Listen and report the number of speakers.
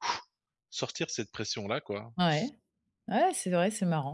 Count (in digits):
2